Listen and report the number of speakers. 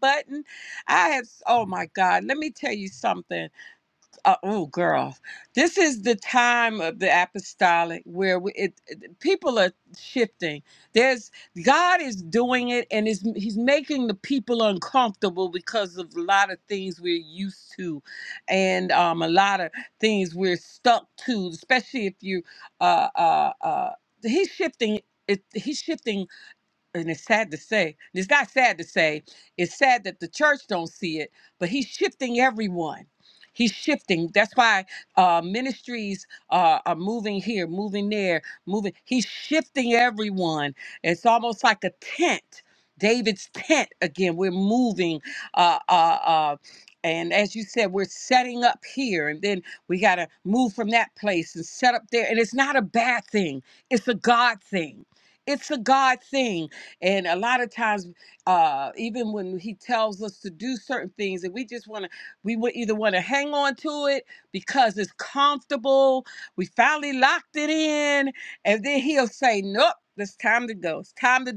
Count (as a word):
one